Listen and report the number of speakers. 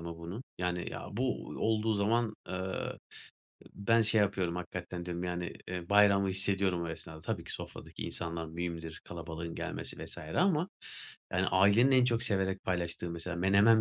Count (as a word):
one